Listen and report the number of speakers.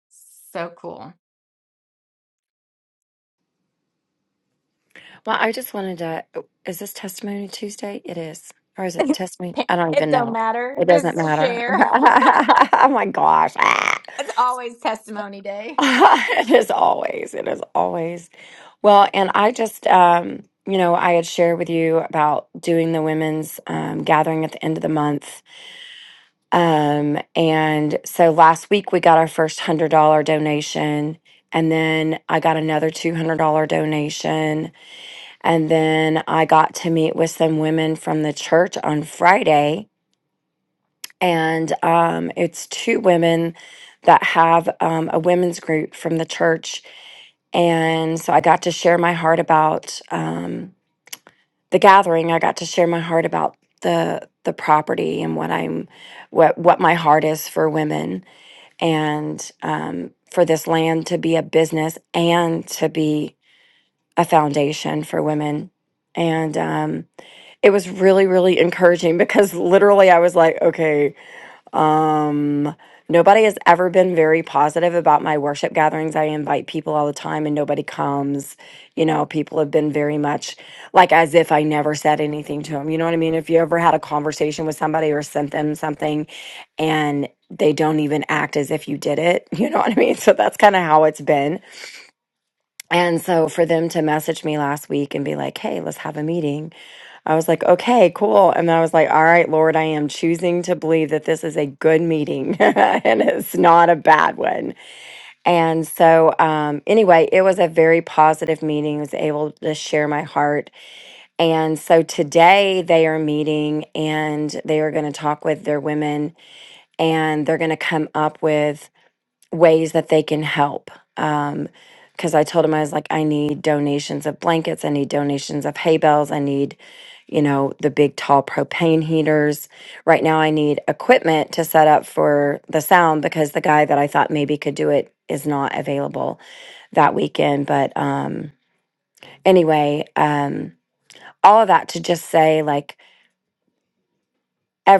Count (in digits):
2